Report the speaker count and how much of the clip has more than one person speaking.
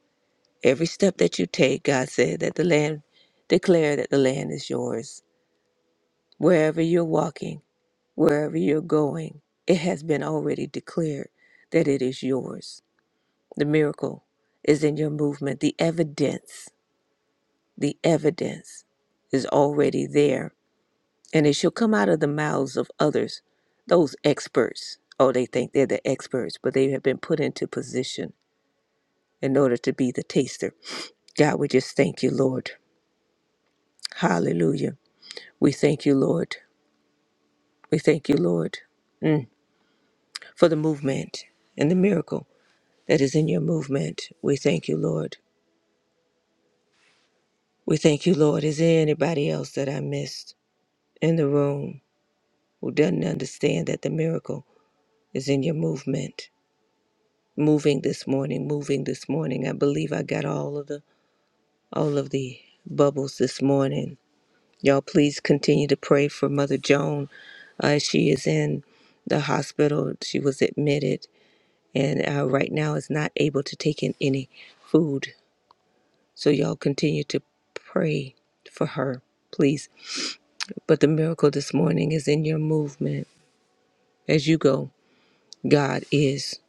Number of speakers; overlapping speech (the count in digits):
1, no overlap